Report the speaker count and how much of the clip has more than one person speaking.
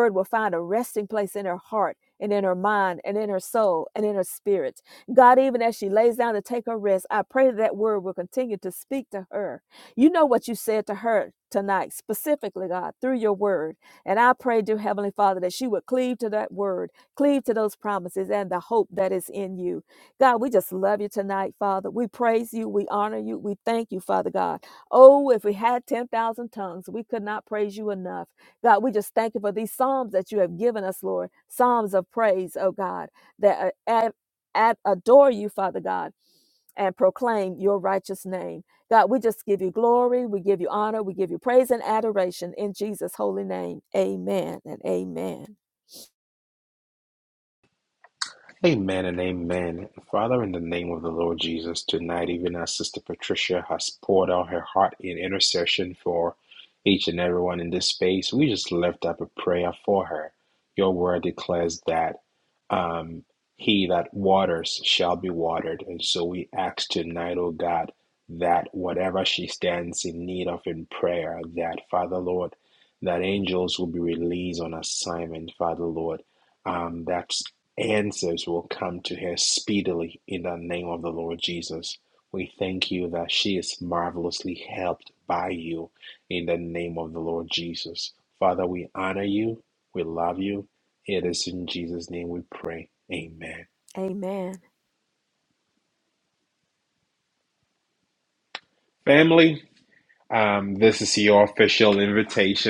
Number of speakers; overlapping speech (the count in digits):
2, no overlap